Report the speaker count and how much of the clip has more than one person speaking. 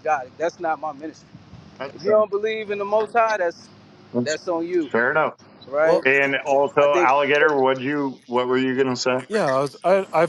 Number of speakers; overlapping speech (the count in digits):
3, about 10%